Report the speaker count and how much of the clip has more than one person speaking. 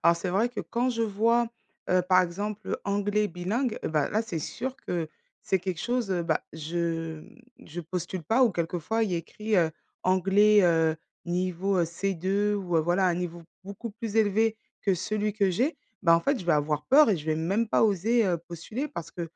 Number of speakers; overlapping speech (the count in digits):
1, no overlap